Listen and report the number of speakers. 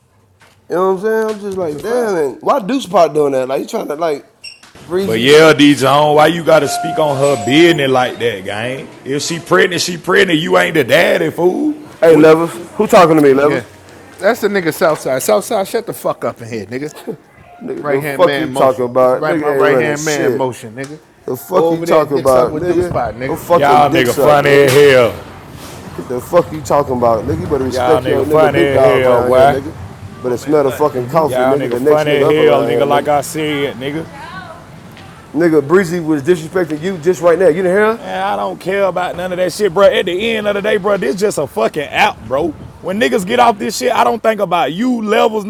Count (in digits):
3